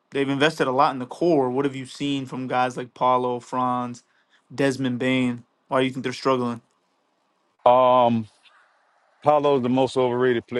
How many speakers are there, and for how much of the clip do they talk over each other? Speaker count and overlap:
2, no overlap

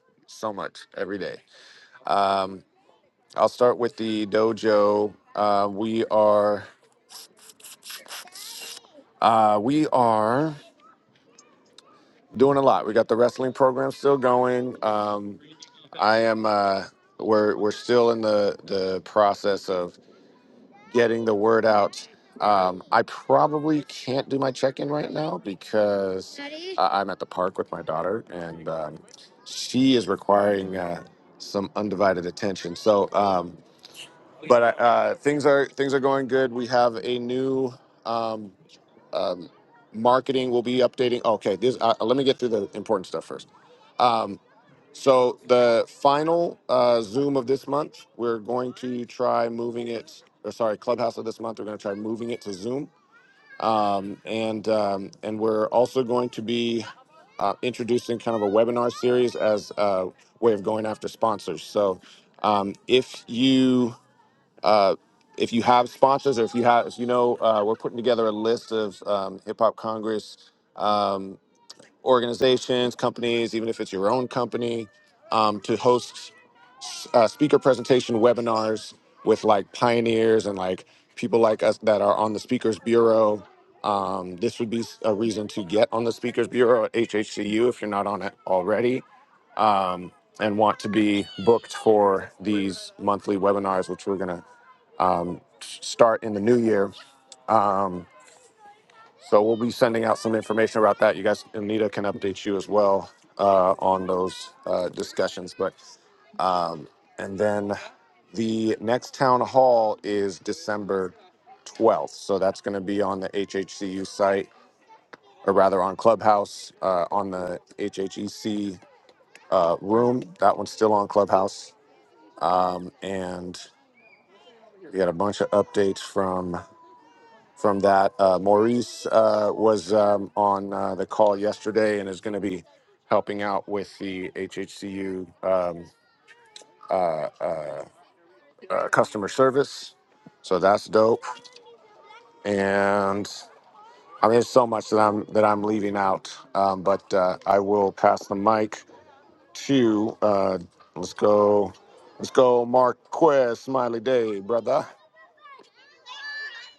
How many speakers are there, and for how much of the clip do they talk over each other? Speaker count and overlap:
1, no overlap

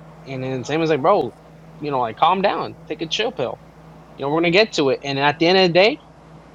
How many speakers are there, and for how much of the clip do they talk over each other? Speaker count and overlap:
1, no overlap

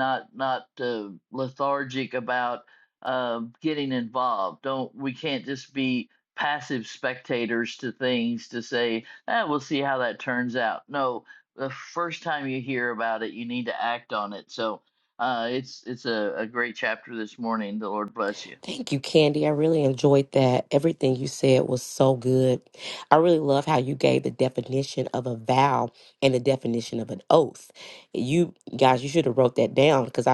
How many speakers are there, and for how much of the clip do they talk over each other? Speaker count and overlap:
2, no overlap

